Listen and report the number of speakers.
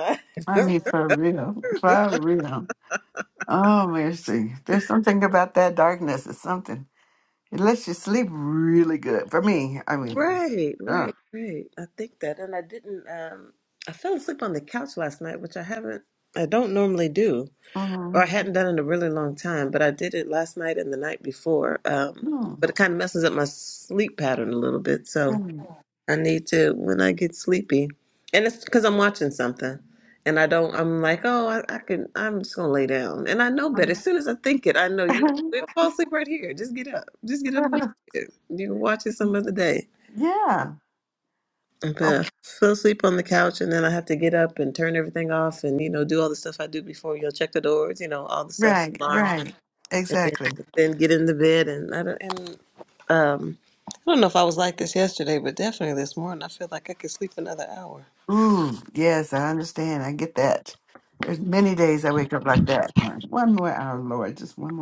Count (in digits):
2